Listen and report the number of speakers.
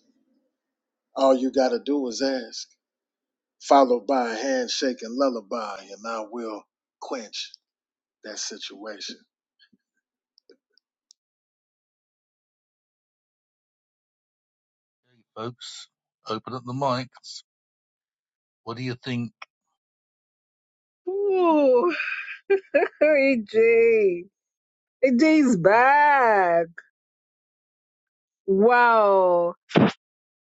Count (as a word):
three